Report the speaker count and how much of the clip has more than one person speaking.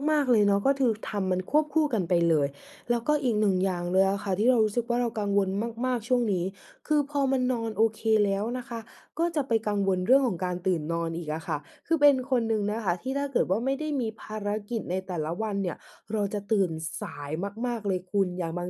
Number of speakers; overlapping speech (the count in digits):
1, no overlap